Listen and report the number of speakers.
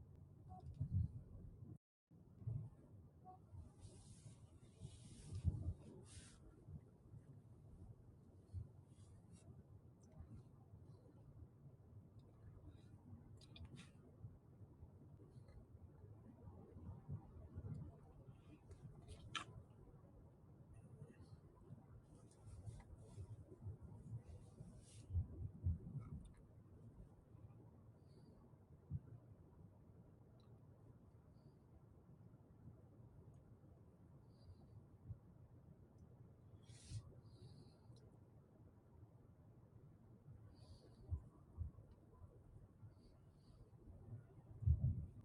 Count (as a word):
zero